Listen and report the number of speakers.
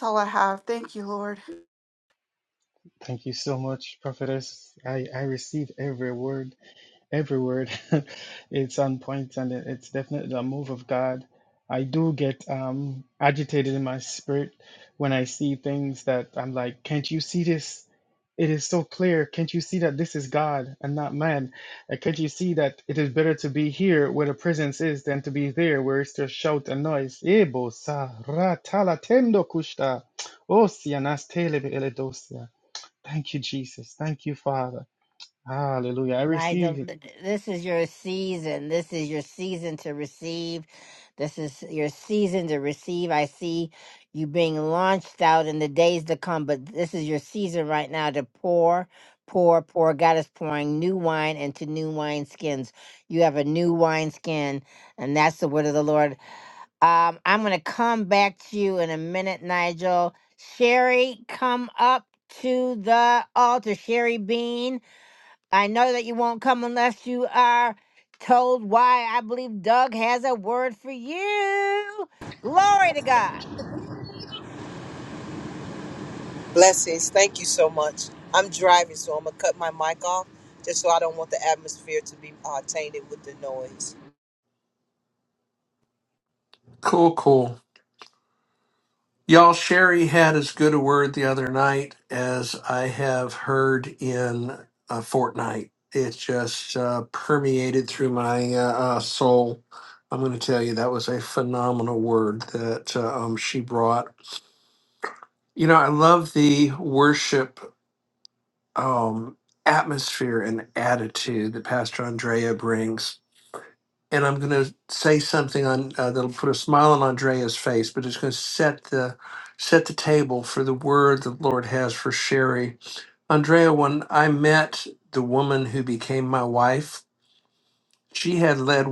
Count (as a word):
five